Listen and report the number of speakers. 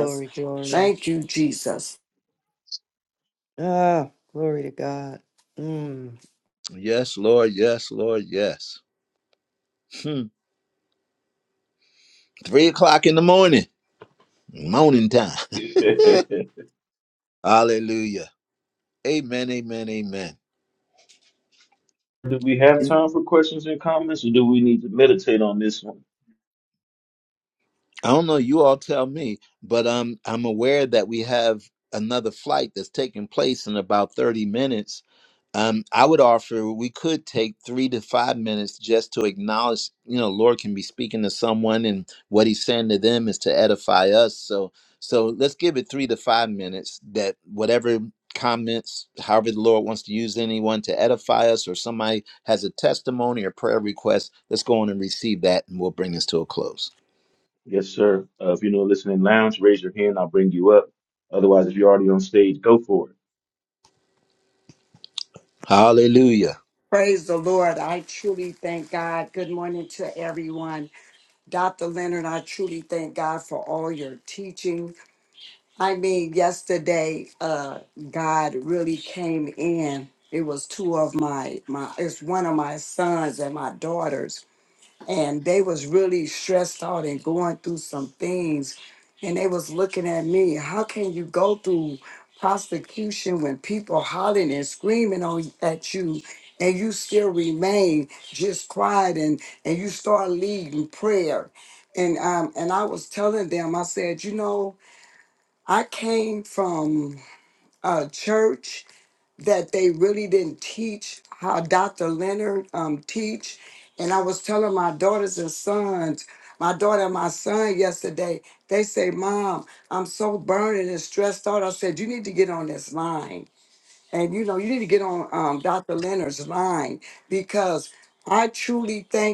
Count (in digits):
4